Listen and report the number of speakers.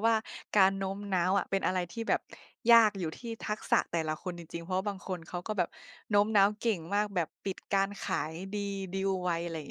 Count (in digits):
1